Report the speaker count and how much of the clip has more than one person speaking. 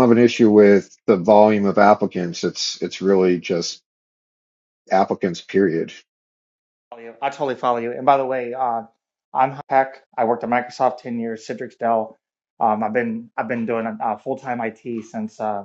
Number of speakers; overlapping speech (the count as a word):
two, no overlap